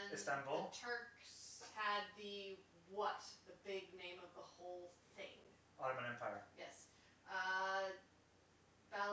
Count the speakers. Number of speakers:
two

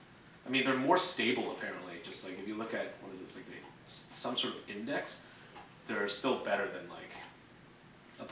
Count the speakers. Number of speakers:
one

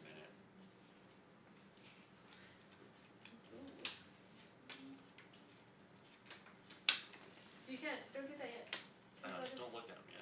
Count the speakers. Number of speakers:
two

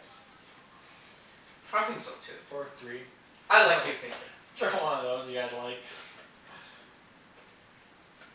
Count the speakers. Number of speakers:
two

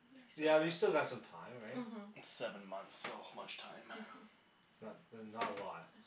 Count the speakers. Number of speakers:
three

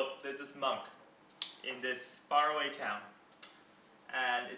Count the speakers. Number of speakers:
one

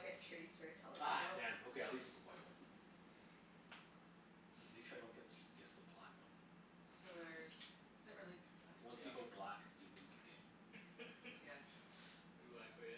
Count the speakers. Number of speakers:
four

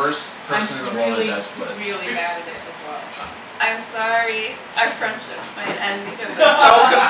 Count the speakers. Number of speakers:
three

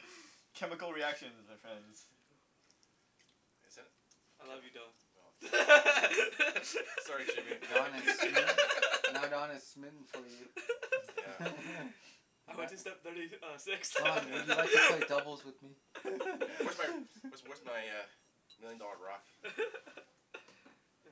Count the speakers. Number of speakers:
four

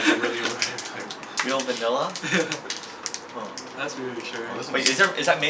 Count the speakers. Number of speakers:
three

